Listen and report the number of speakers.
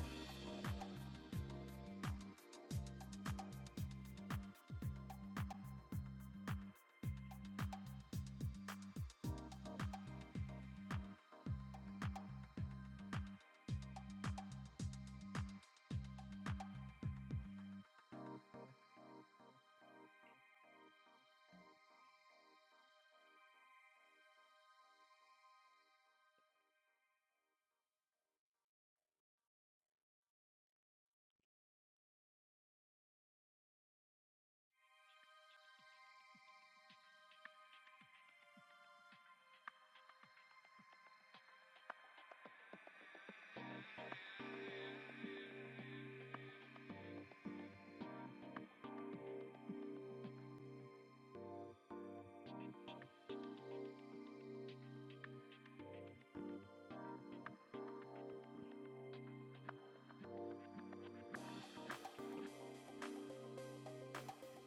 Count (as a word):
zero